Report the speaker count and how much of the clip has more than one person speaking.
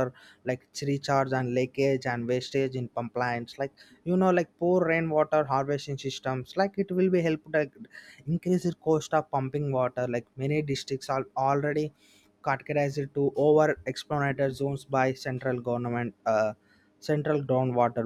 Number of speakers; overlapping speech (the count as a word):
one, no overlap